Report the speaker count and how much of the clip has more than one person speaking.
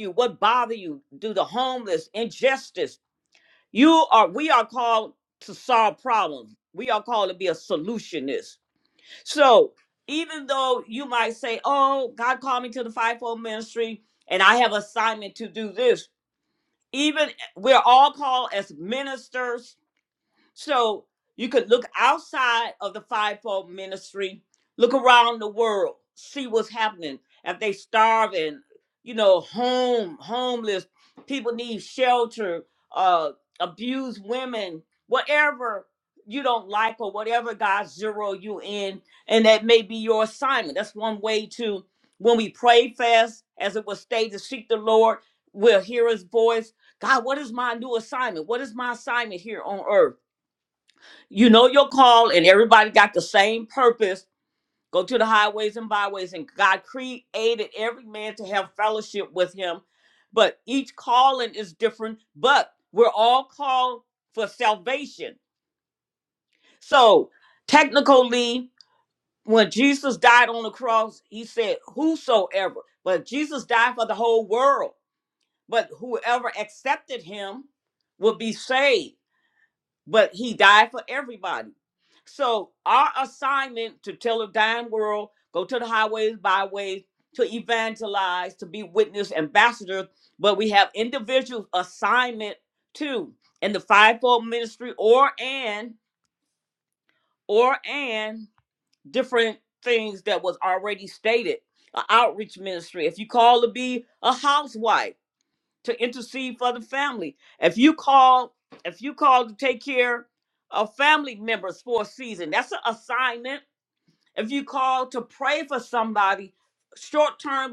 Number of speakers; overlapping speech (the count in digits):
1, no overlap